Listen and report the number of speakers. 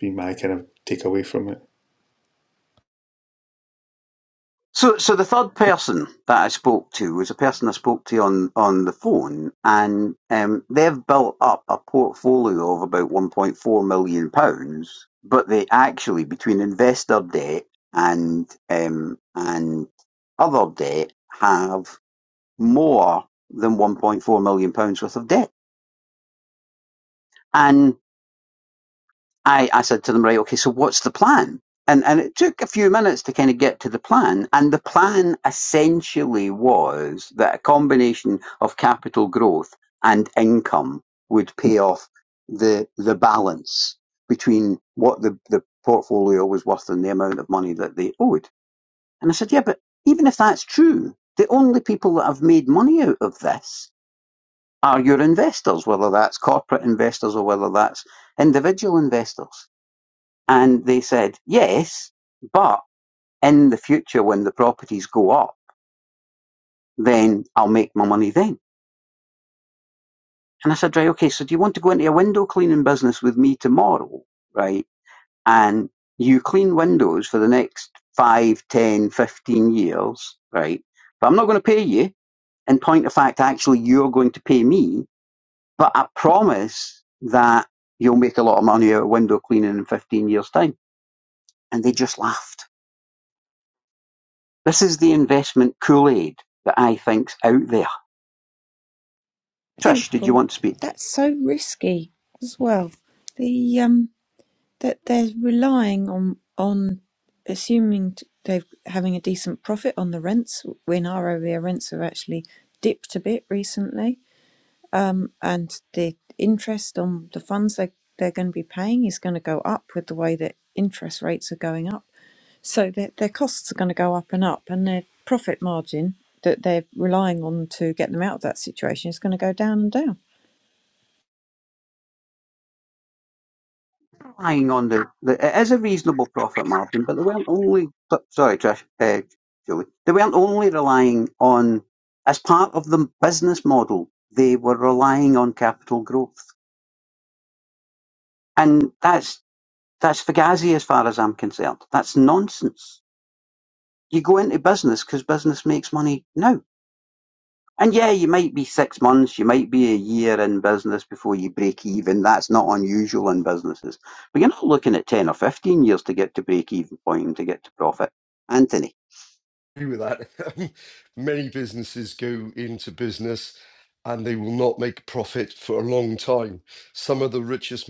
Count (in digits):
4